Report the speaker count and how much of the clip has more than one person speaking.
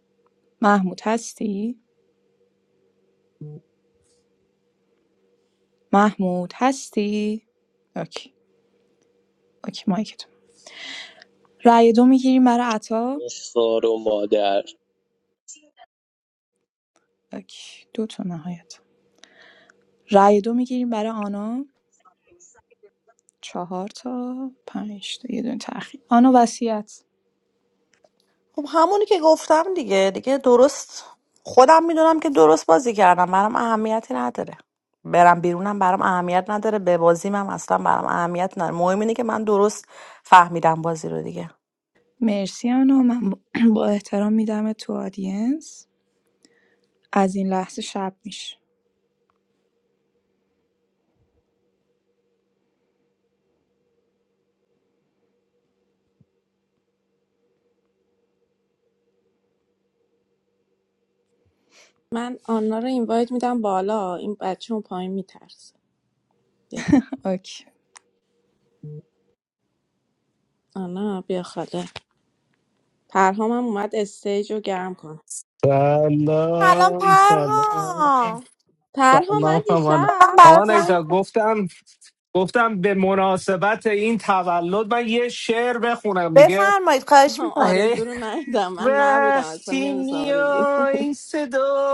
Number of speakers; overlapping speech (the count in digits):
5, about 6%